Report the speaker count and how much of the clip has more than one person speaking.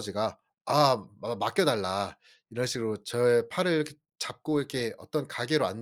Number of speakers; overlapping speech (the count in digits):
1, no overlap